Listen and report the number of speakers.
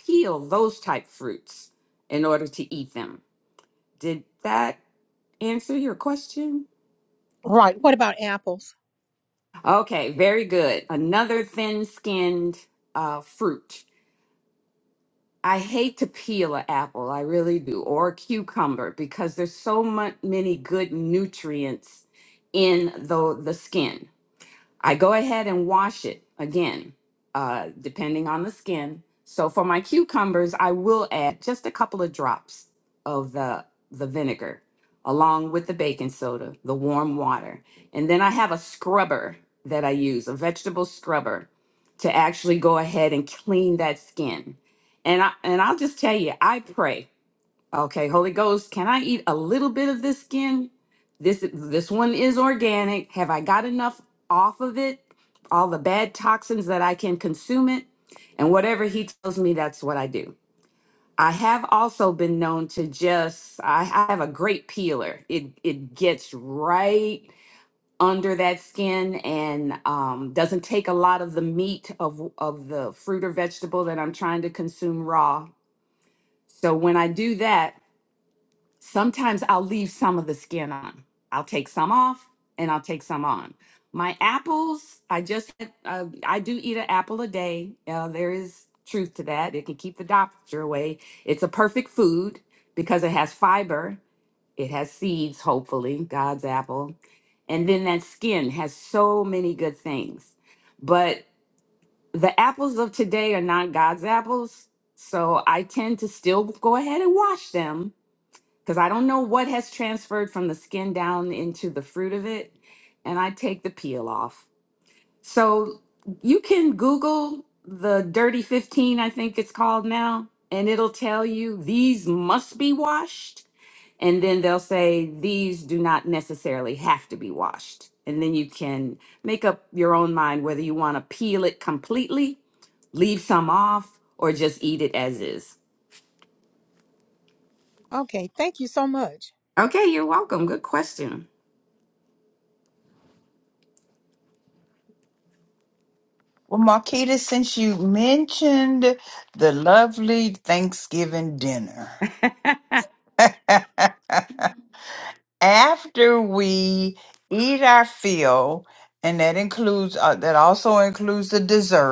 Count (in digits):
3